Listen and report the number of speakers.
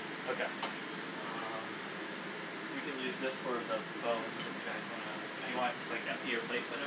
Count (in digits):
1